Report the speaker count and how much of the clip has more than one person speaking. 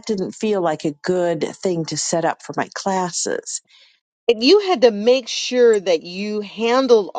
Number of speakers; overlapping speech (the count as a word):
two, no overlap